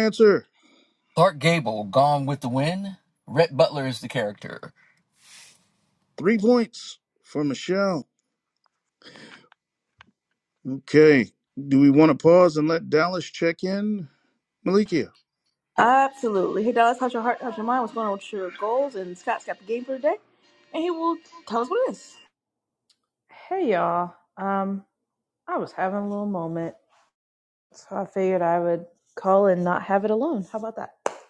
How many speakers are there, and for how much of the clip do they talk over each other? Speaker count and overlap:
4, no overlap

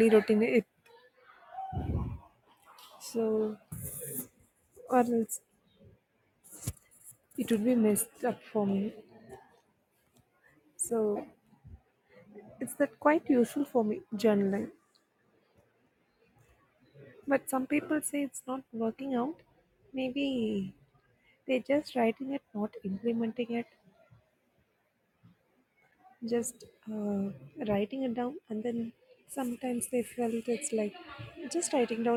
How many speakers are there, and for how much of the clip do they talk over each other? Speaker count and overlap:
1, no overlap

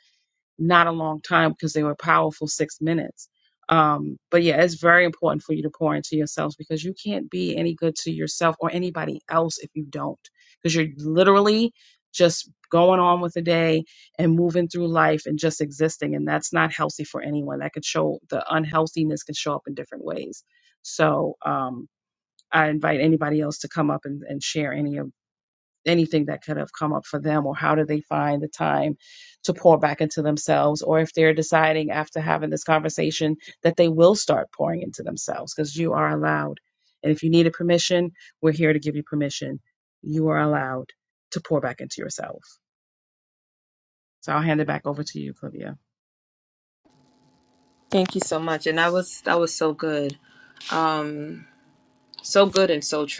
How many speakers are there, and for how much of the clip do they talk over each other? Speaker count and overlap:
2, no overlap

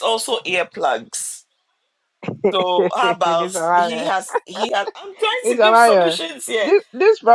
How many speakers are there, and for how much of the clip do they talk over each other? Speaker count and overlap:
2, about 24%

